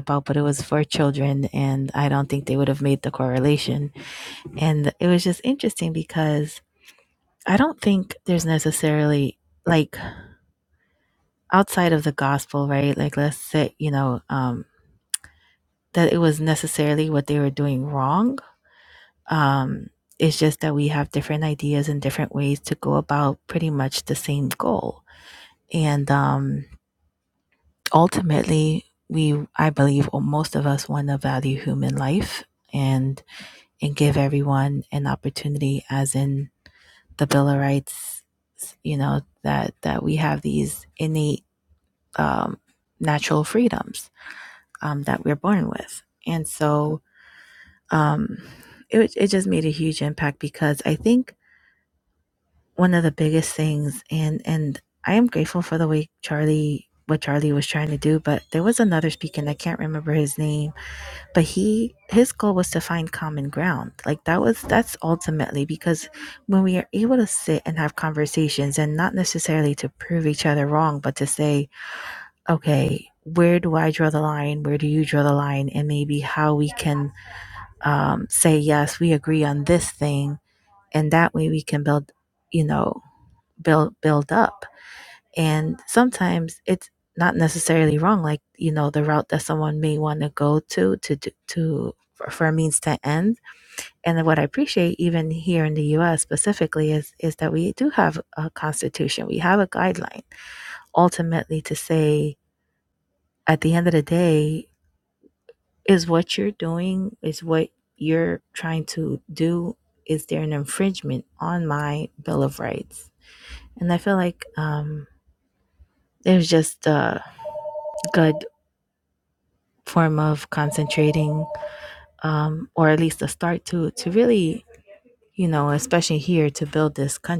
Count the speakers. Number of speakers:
1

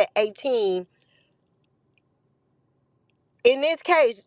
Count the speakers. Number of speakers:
1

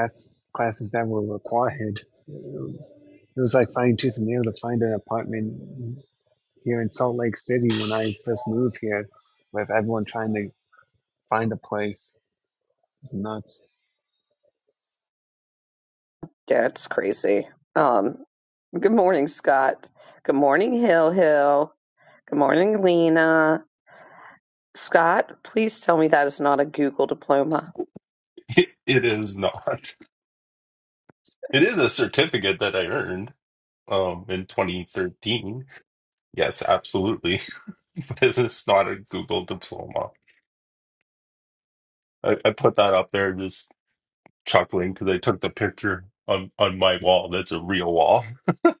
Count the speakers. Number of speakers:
3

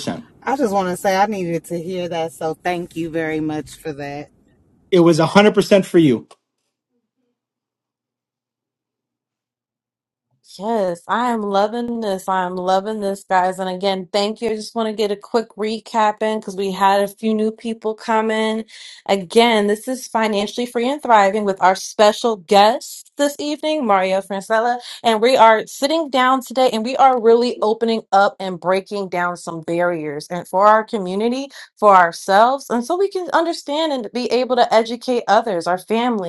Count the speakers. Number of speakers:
3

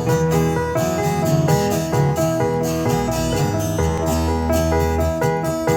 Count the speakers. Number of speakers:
0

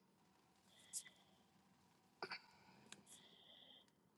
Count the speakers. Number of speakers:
0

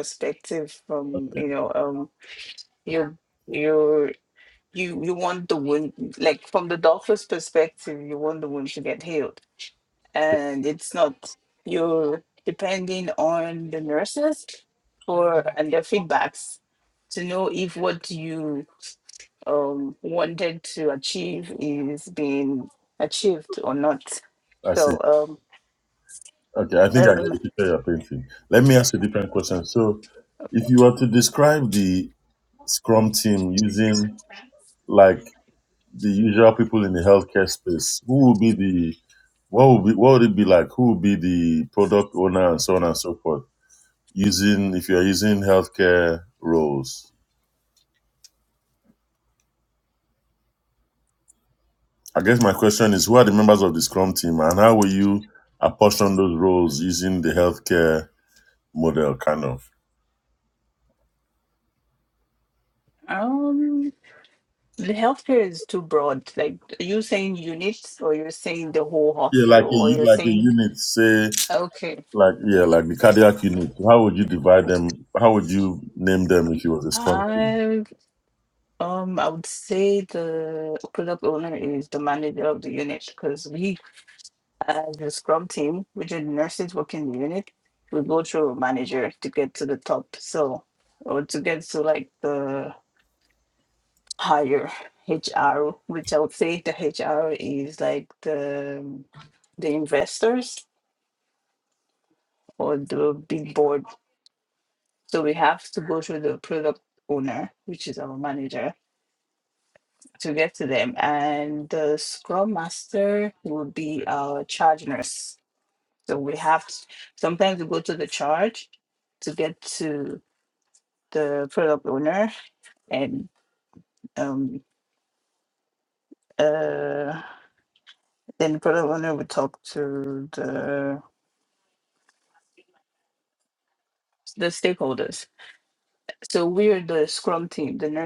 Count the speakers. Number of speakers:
2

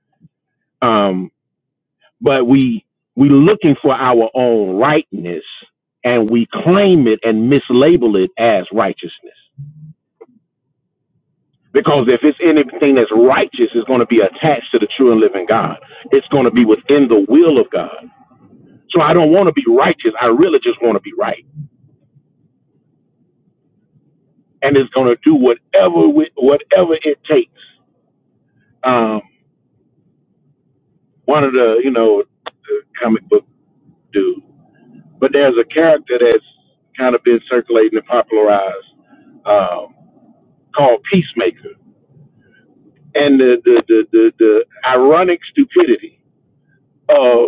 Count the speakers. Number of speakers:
1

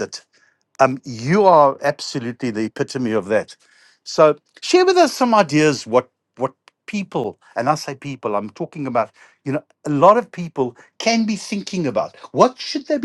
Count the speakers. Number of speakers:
1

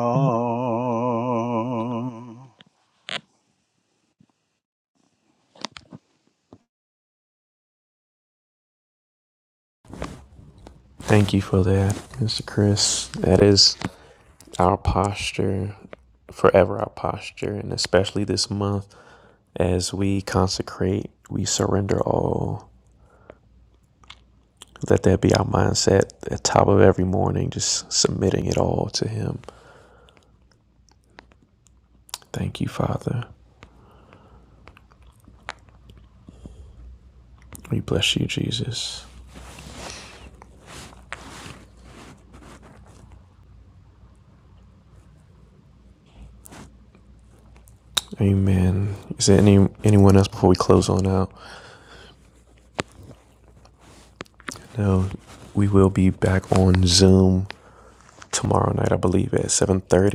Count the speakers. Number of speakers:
2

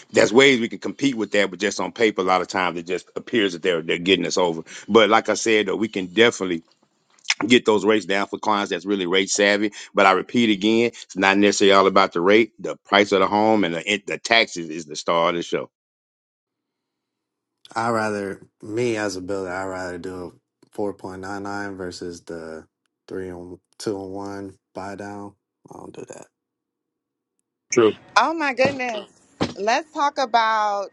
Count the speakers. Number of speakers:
3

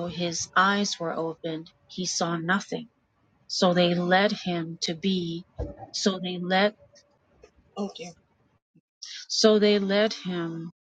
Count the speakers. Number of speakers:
1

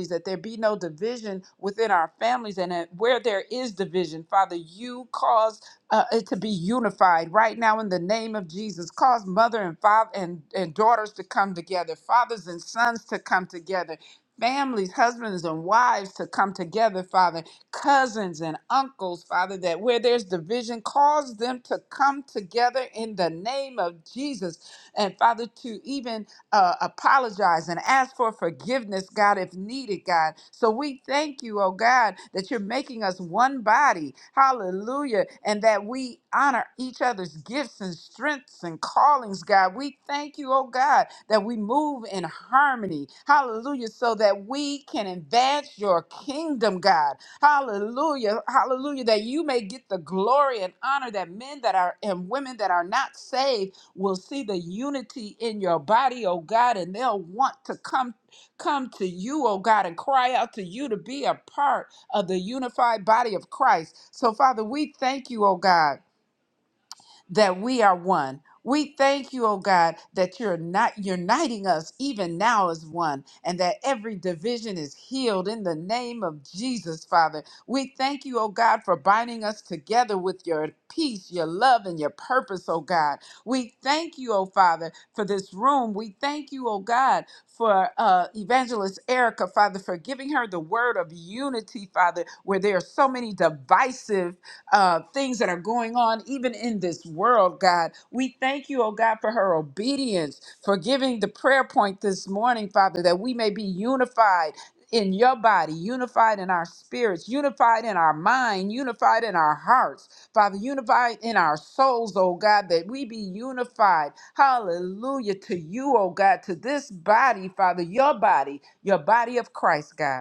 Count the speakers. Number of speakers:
1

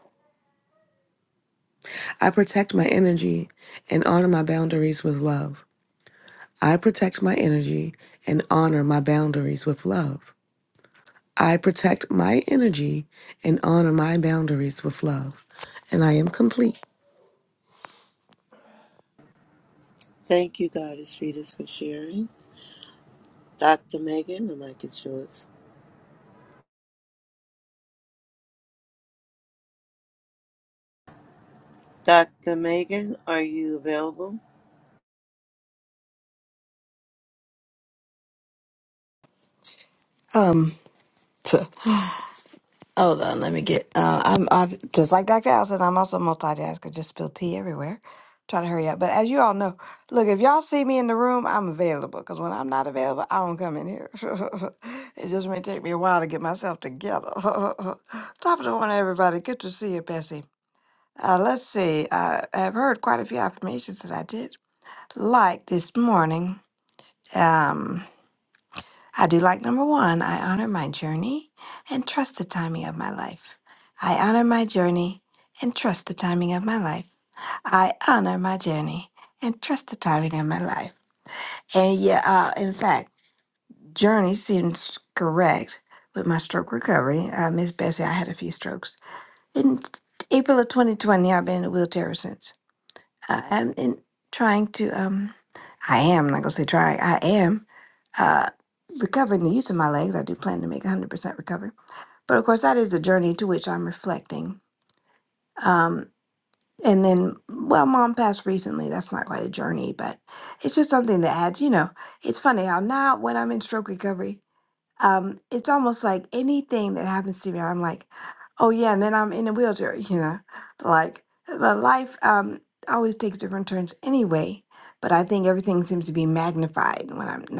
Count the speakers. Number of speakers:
3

